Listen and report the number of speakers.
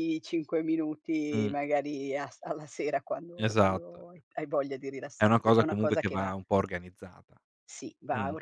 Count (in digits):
2